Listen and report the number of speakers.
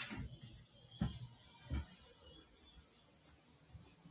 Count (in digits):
0